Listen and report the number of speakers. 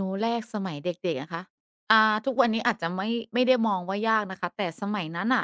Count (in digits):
1